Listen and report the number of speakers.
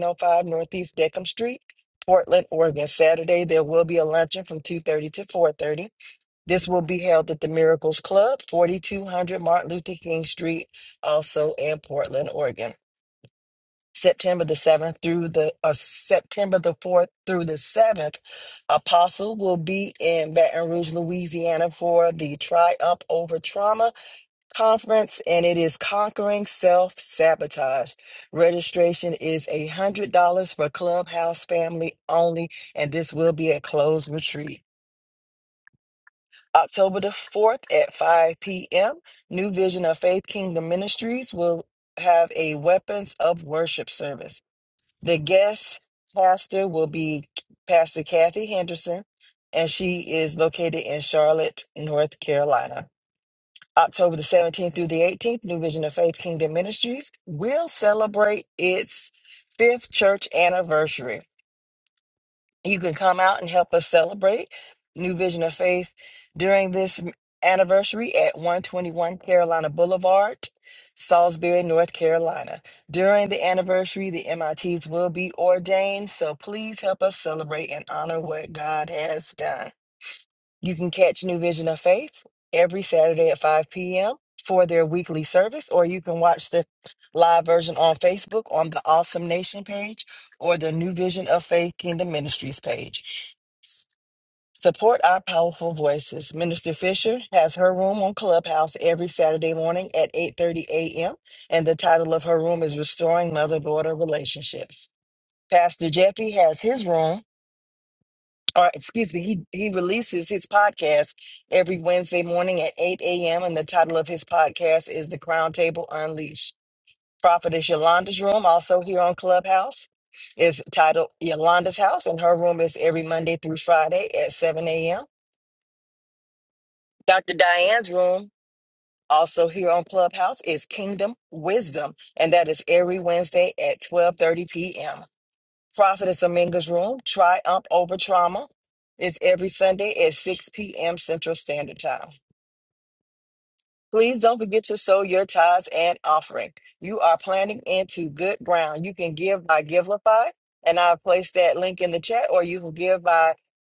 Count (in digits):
1